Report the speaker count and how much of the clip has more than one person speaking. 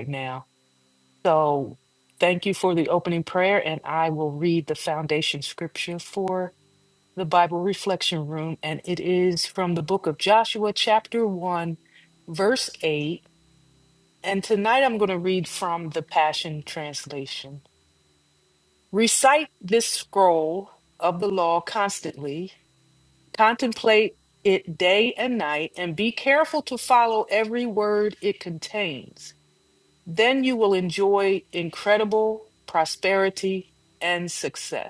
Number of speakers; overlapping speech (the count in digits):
1, no overlap